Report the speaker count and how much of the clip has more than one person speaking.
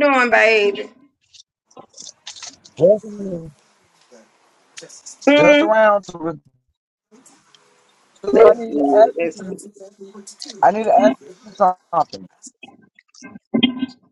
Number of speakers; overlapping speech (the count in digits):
2, about 11%